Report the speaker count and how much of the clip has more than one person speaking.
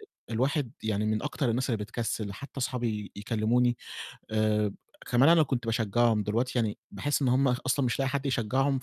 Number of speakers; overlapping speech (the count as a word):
one, no overlap